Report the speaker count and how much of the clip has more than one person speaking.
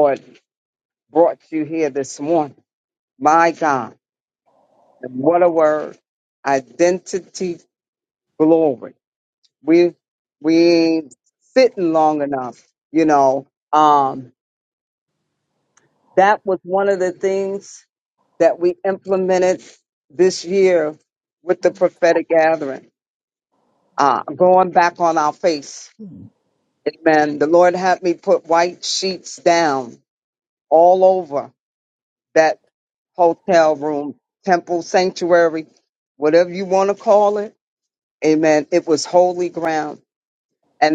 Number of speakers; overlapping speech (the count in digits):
1, no overlap